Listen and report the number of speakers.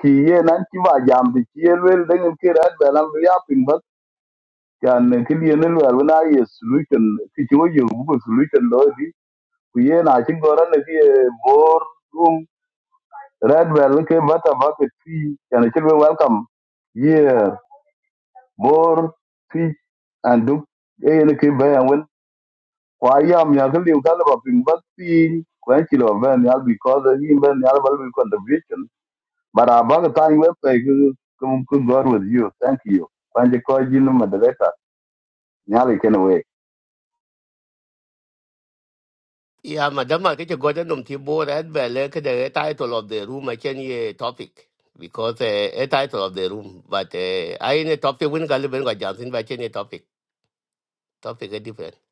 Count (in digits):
2